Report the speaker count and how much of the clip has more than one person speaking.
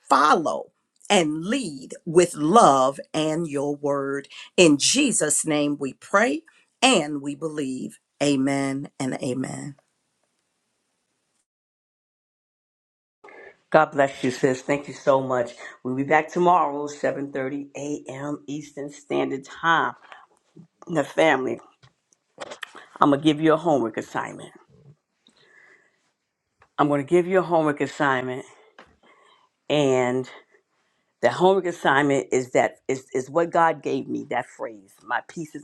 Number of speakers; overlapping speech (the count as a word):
two, no overlap